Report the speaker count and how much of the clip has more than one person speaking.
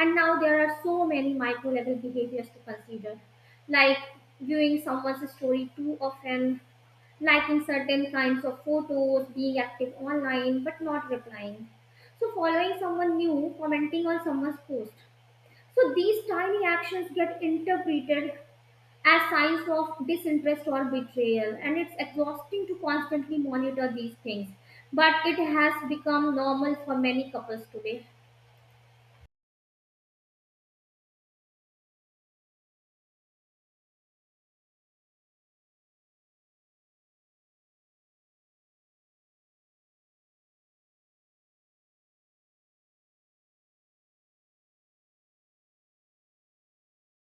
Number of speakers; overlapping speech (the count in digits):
1, no overlap